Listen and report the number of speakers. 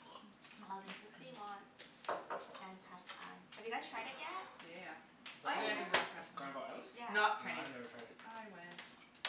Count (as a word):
three